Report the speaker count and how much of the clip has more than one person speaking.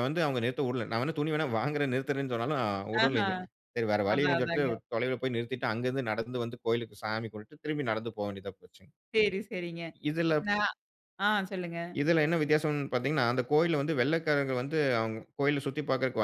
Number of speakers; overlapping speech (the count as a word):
two, about 6%